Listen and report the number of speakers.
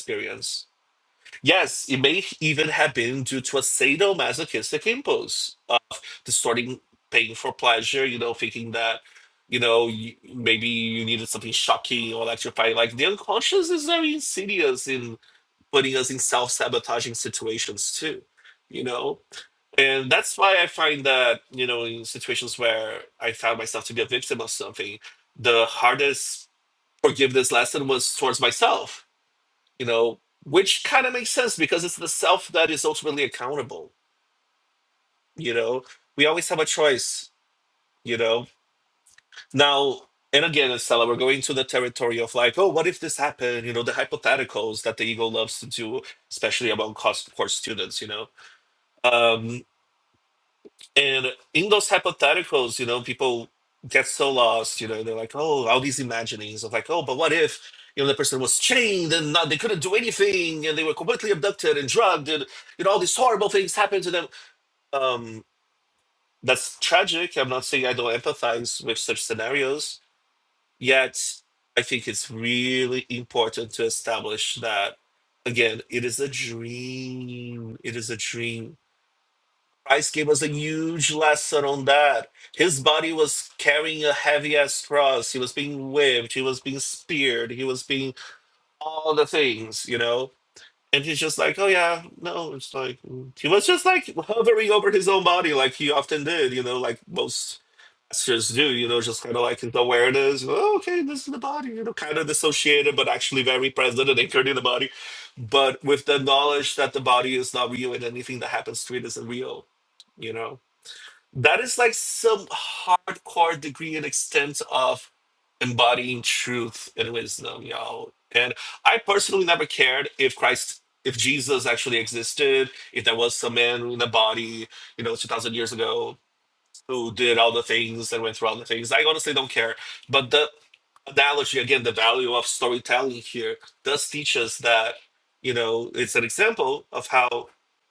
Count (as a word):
one